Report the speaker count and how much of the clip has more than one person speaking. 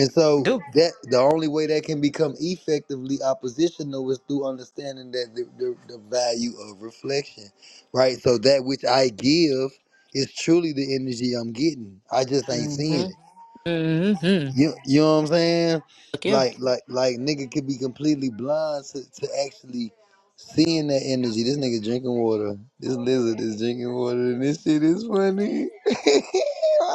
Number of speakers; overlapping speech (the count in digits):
2, about 4%